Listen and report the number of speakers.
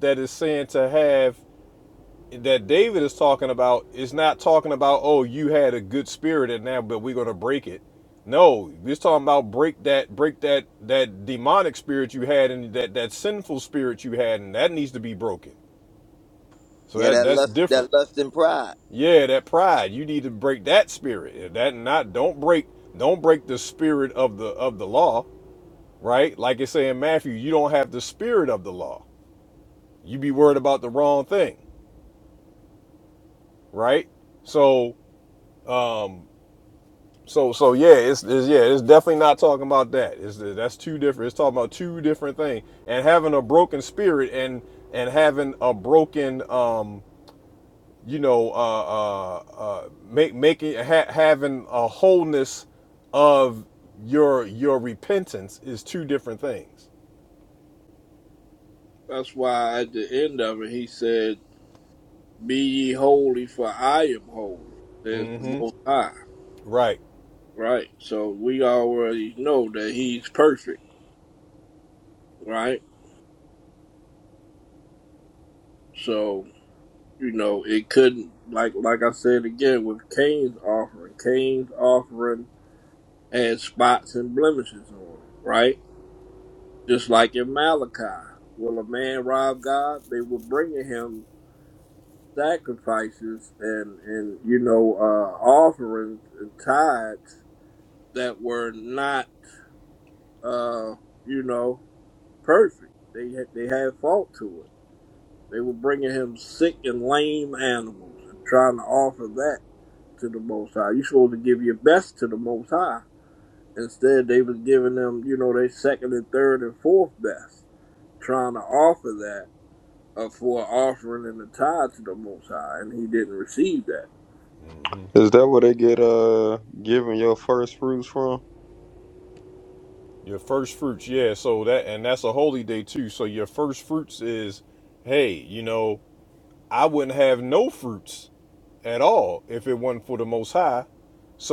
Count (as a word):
four